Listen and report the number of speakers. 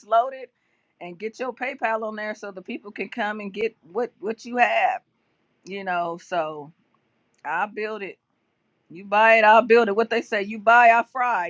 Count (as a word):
one